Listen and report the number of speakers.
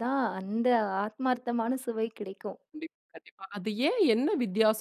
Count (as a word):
two